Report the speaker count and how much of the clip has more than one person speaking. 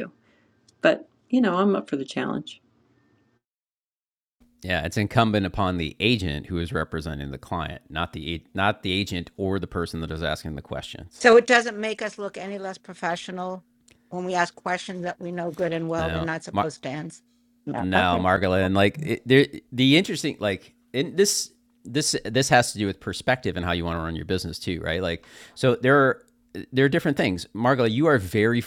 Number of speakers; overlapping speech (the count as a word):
three, about 4%